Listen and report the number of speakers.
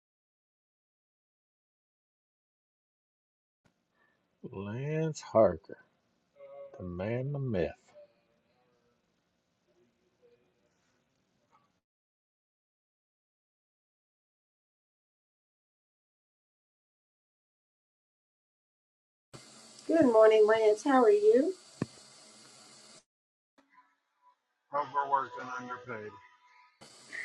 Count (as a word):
three